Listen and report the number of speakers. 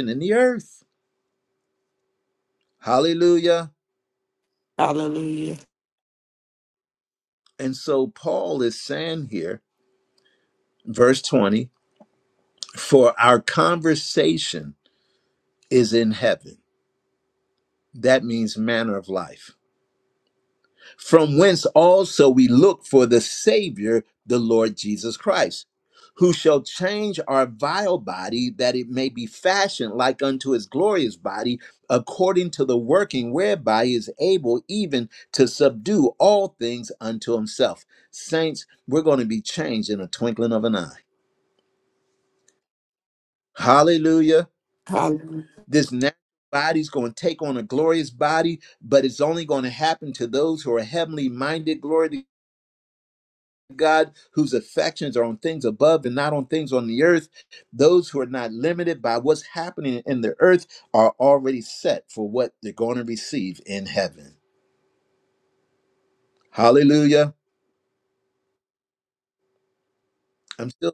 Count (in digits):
2